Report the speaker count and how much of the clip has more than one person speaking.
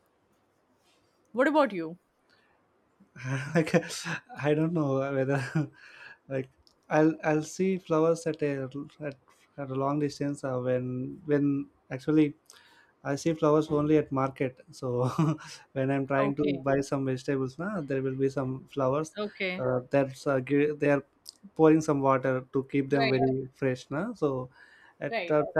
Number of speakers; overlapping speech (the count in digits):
2, about 4%